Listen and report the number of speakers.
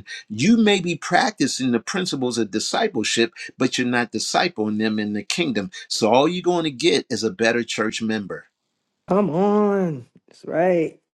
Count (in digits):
2